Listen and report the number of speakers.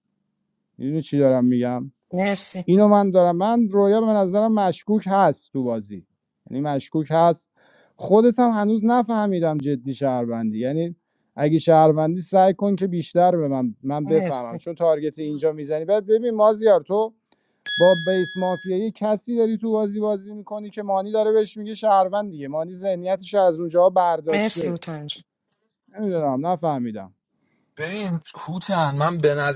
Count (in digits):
3